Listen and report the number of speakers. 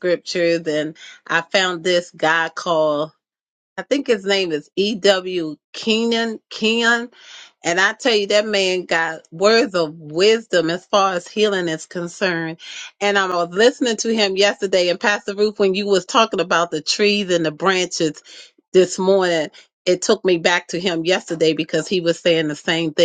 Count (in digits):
1